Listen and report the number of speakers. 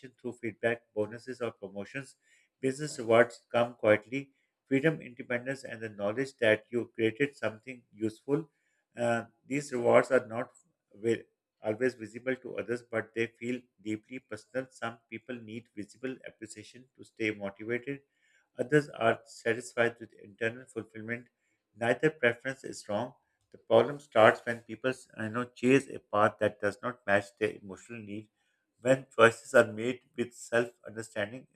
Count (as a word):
one